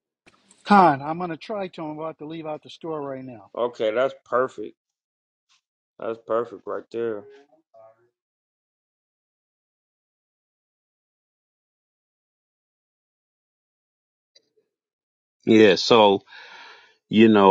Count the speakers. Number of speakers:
3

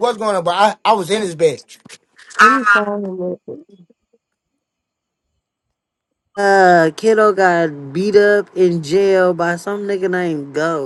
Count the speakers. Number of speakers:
3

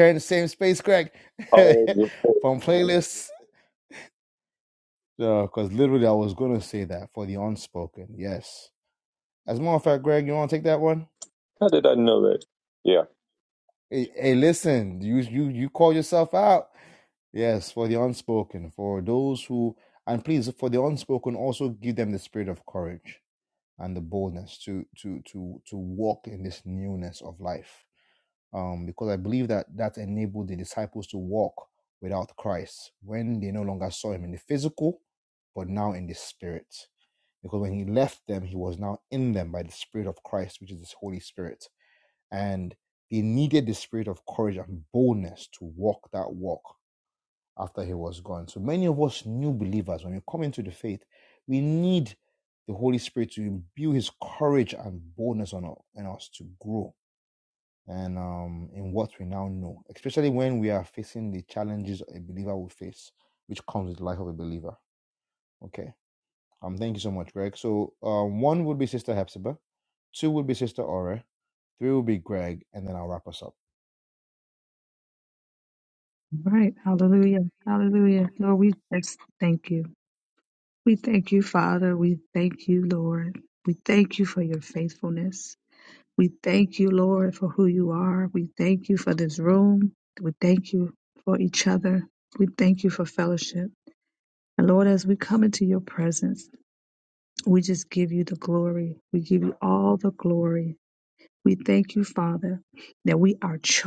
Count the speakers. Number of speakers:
3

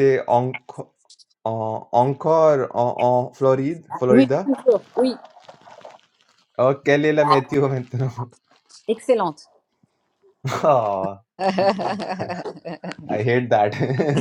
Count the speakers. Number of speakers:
2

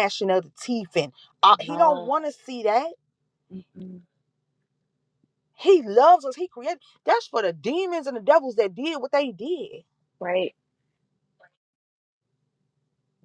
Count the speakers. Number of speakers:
2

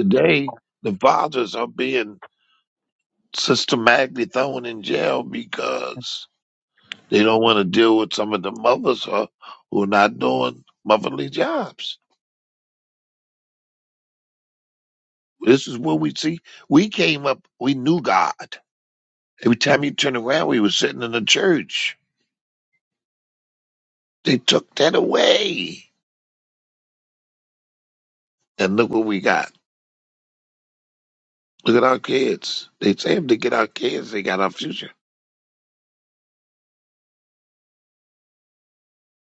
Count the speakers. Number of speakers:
1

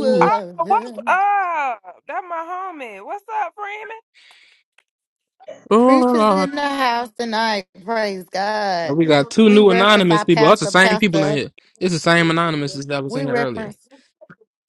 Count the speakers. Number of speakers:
3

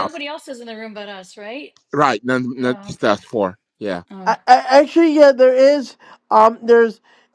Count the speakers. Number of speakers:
3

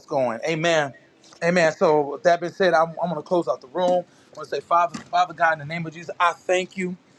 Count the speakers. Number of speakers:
1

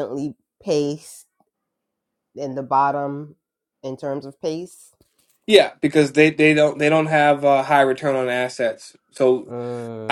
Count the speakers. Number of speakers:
2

